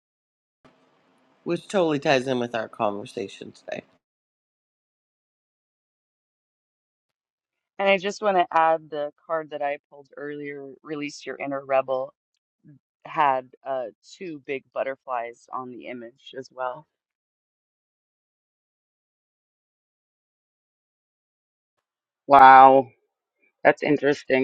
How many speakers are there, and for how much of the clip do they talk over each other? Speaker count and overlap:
3, no overlap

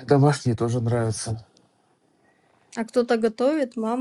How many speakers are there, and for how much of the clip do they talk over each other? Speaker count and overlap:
2, no overlap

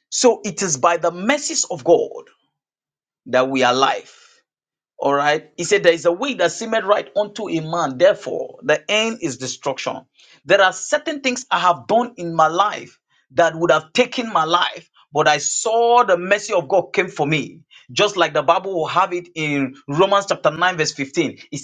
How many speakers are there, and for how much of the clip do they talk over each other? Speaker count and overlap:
1, no overlap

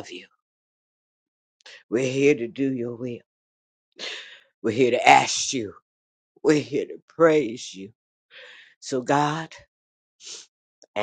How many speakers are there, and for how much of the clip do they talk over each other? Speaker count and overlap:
1, no overlap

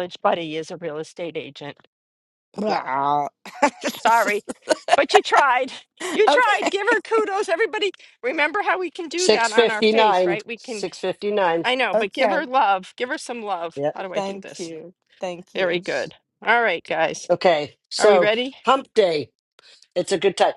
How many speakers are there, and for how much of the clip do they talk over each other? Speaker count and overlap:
3, about 17%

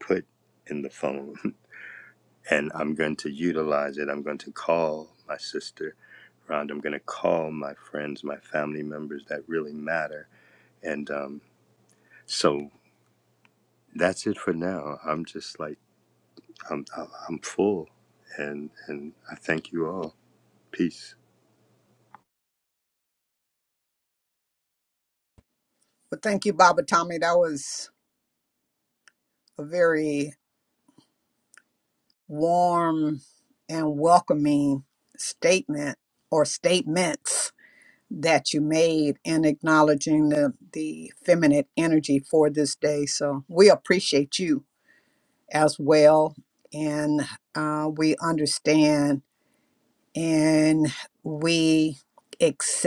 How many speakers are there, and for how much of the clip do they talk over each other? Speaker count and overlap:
2, no overlap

